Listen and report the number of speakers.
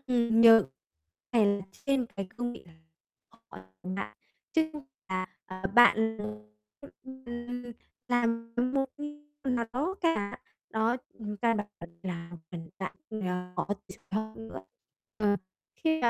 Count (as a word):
one